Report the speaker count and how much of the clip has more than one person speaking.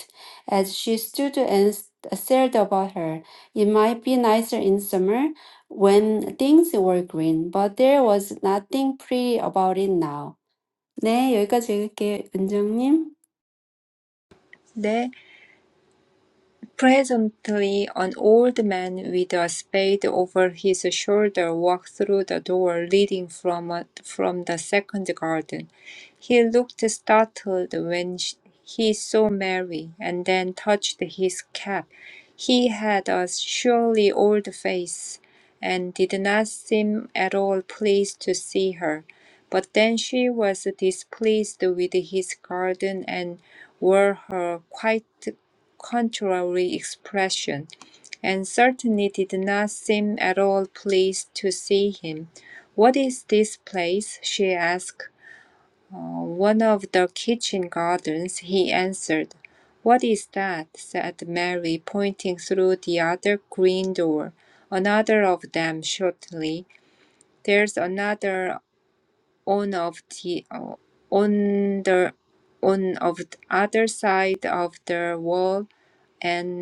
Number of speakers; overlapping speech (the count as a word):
two, no overlap